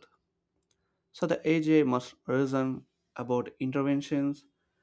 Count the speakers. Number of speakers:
one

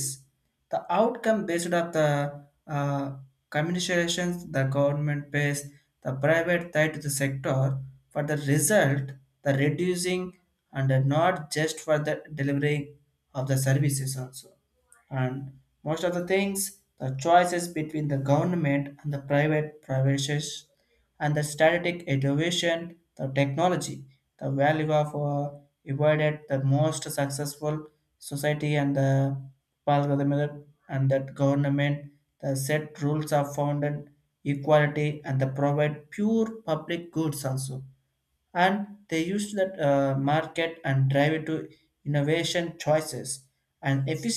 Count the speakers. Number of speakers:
one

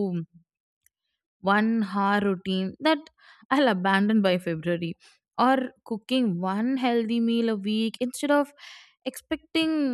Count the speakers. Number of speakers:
one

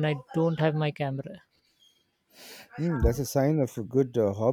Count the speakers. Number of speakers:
two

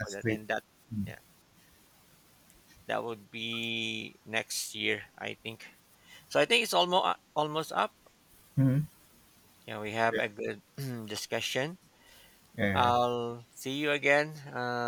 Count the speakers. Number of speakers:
two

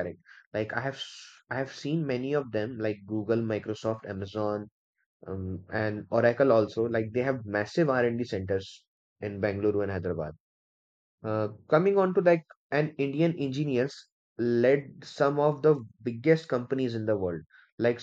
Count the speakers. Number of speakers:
one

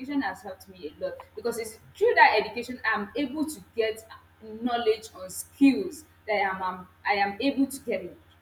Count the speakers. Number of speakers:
one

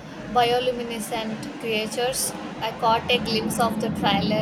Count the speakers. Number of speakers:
one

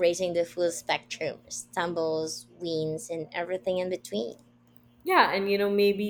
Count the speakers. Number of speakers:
two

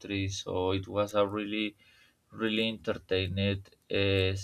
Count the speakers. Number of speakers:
one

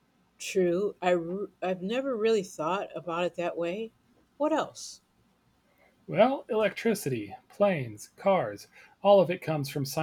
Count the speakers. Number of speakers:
two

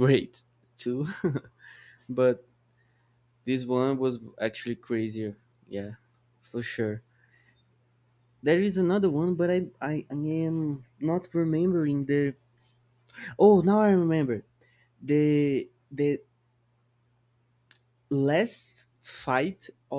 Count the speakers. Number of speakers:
one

